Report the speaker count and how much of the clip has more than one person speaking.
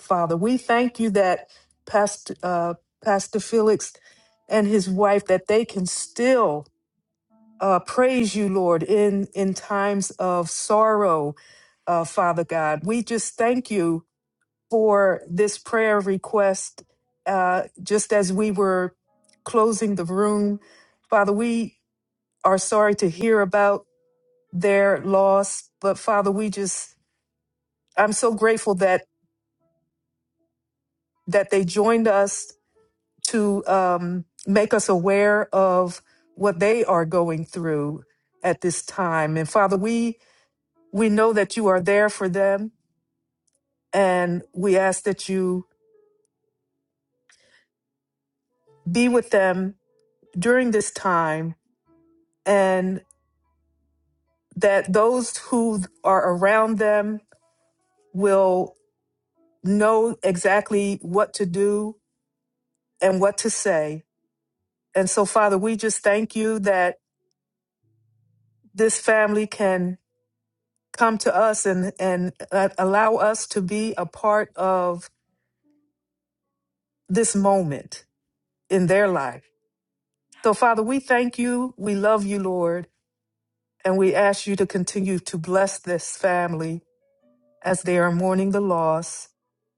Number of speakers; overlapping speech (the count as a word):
one, no overlap